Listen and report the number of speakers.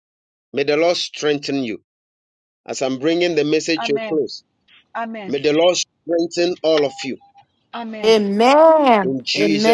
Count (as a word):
three